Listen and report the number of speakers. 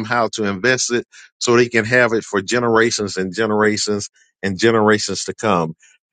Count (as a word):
one